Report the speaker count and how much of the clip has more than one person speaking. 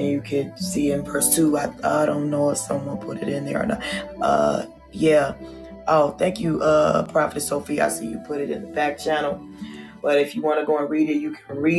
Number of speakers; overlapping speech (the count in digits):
1, no overlap